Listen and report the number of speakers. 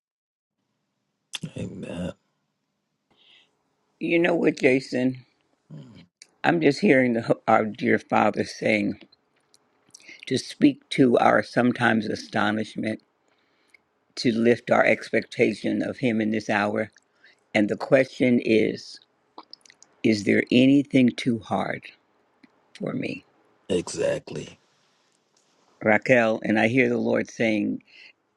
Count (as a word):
two